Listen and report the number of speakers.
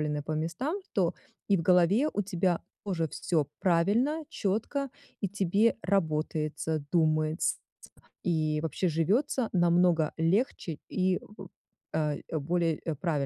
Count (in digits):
1